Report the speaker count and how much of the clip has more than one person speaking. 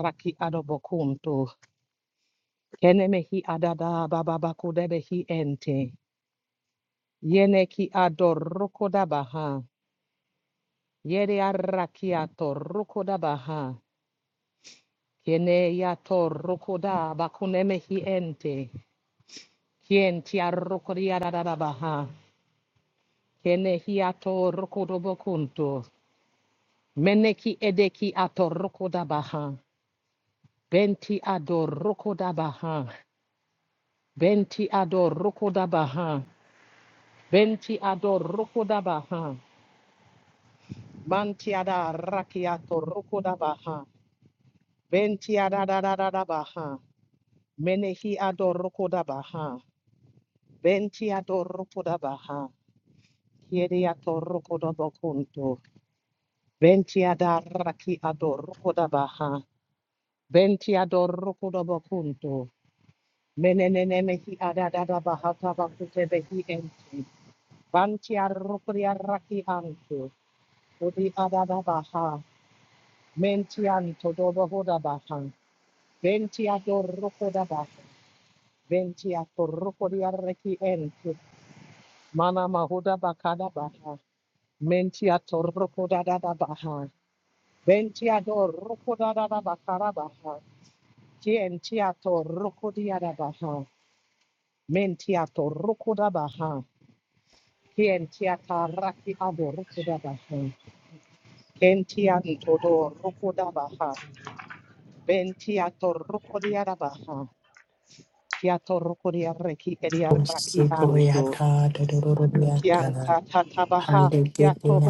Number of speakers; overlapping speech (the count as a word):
two, about 2%